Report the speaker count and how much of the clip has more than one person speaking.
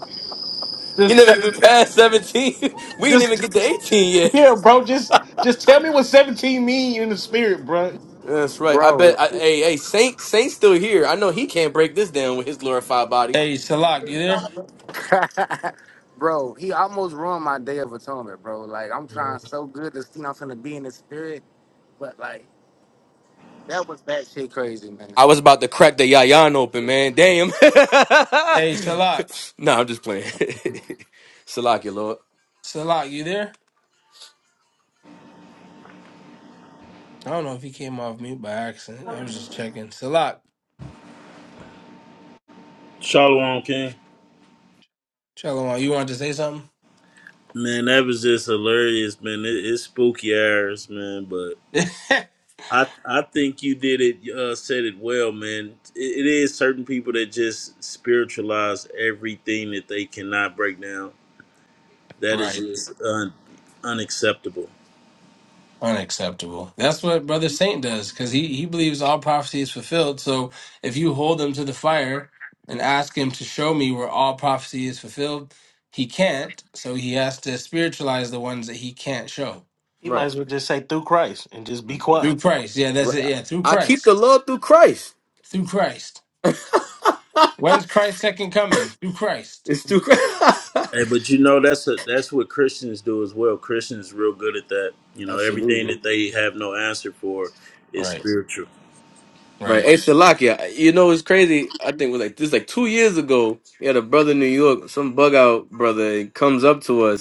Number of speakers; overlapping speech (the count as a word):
five, about 4%